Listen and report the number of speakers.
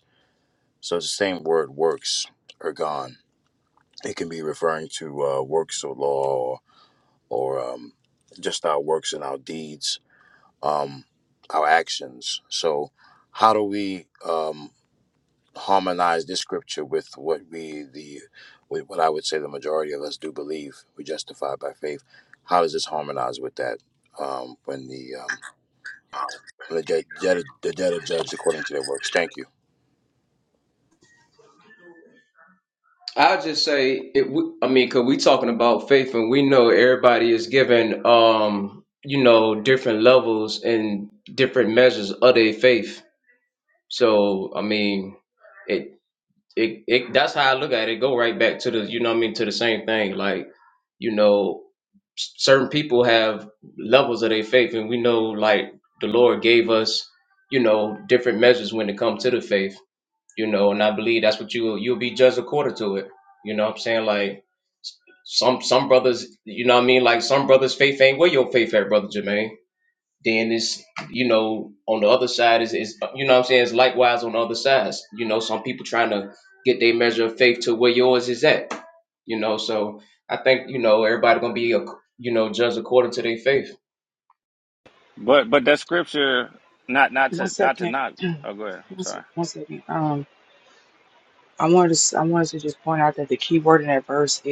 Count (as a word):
four